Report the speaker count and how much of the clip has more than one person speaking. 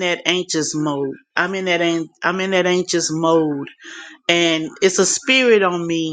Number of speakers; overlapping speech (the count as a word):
one, no overlap